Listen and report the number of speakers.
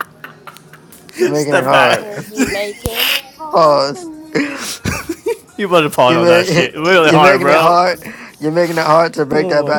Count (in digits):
3